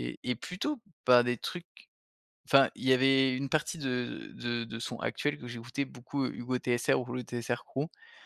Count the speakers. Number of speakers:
one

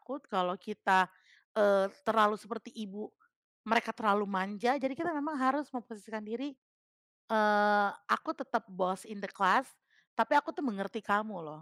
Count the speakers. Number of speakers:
one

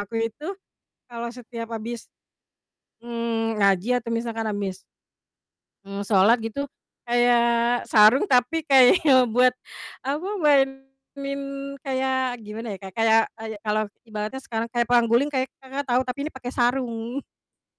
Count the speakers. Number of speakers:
one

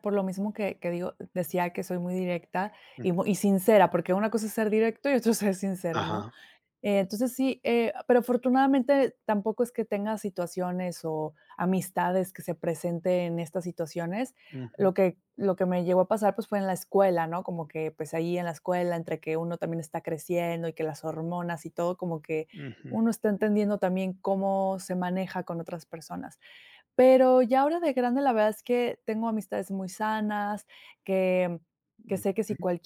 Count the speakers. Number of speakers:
two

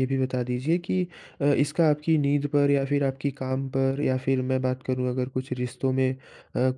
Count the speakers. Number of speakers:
one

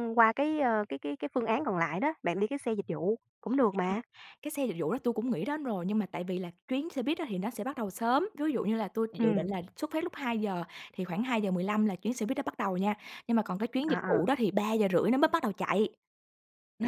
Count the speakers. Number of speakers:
two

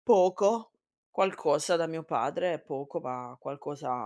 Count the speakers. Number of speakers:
one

